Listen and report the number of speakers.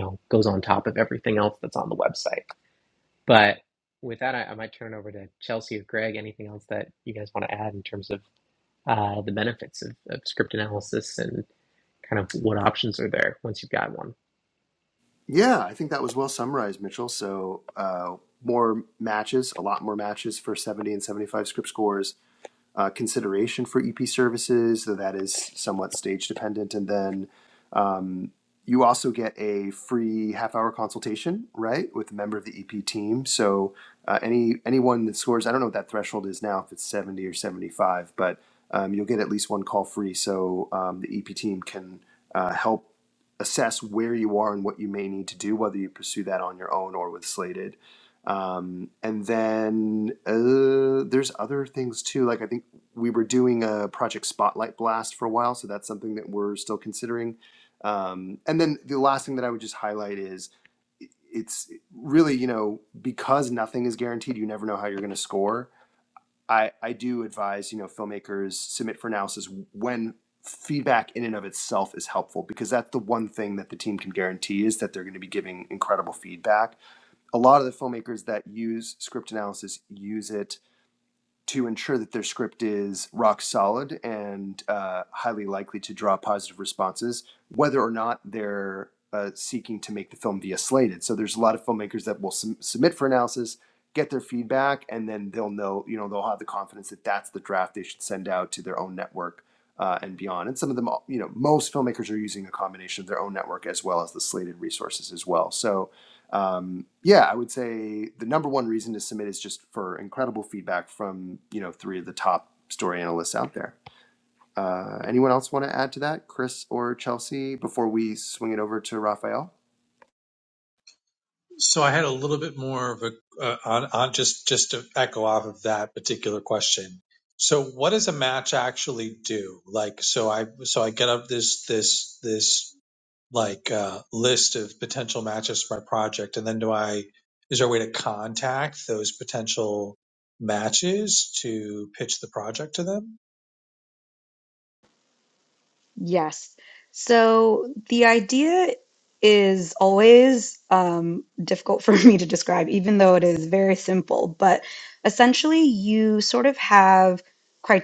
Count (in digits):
4